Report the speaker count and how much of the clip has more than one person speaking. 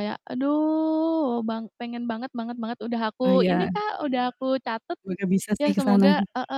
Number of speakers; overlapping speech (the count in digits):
2, about 17%